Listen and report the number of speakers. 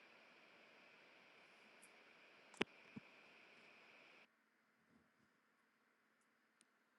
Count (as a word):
zero